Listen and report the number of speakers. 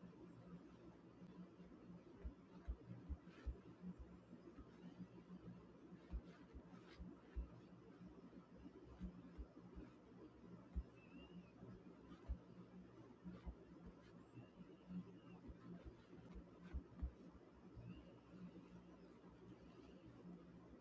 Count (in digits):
0